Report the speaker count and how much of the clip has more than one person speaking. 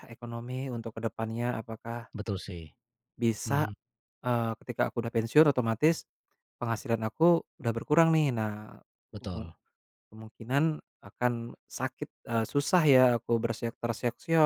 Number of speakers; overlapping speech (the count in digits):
2, about 4%